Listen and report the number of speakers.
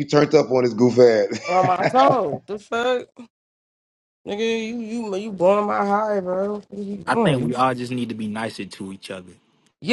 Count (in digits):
3